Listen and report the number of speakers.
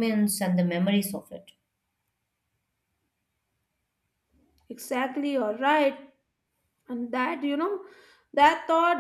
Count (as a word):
two